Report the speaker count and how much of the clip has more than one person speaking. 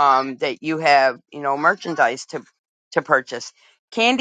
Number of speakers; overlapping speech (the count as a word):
one, no overlap